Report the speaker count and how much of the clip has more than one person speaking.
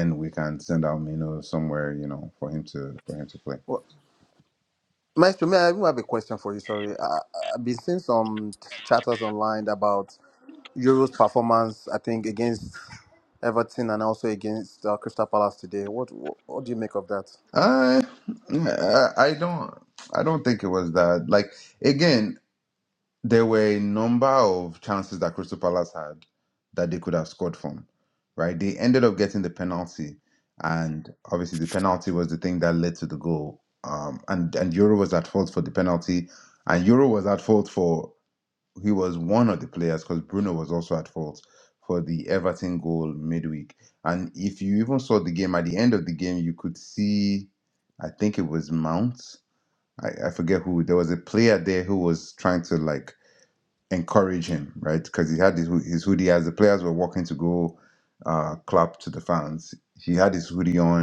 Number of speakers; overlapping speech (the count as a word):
two, no overlap